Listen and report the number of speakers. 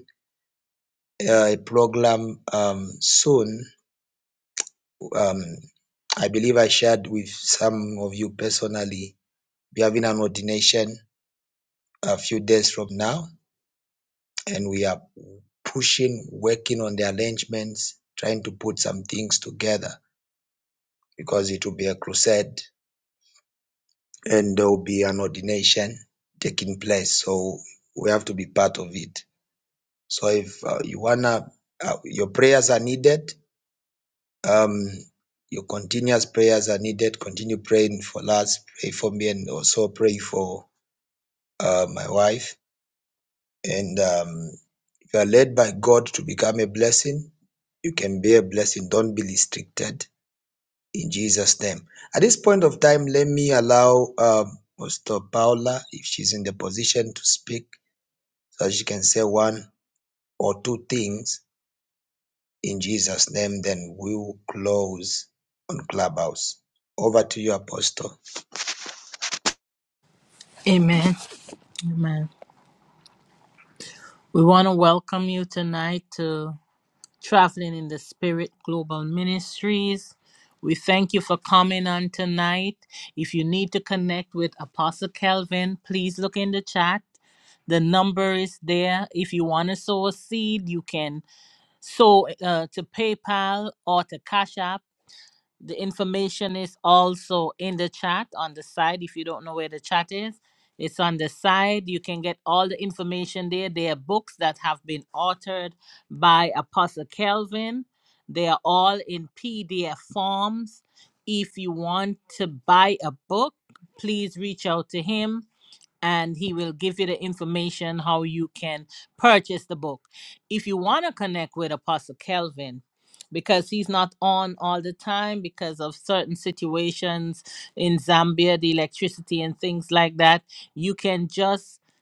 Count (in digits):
2